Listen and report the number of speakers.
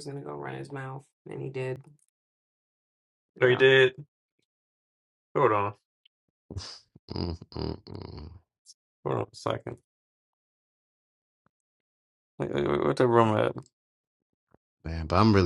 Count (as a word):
three